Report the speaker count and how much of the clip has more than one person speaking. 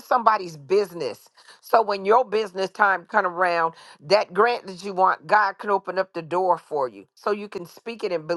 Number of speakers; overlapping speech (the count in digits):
1, no overlap